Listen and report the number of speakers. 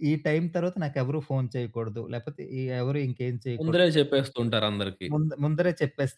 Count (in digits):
2